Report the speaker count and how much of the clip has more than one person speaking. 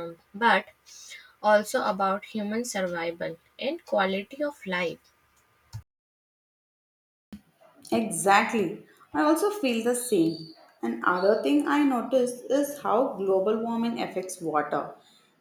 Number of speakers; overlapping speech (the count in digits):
2, no overlap